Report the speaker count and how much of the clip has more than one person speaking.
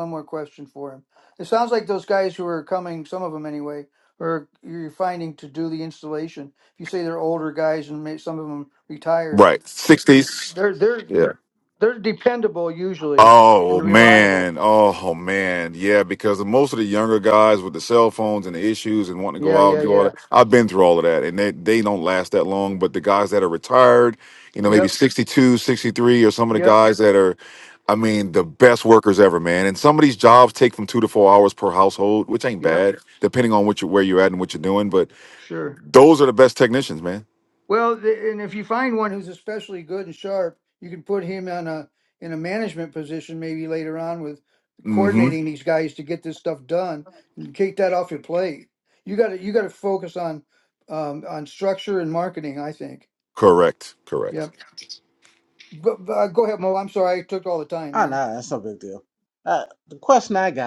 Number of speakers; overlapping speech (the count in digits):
3, about 6%